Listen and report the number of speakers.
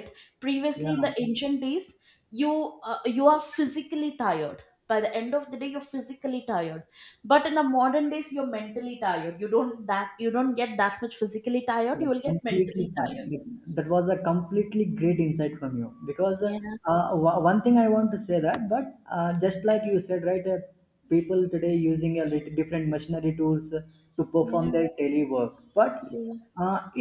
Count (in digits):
2